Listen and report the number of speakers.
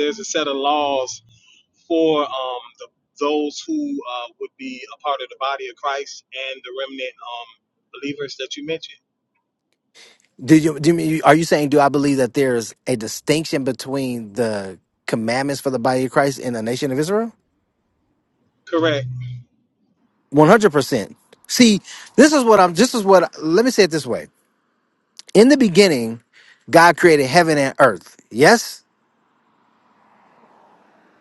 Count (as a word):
two